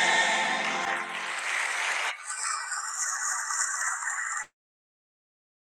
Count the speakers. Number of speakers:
0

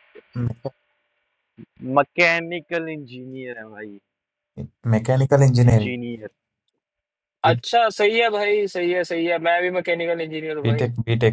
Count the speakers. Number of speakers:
3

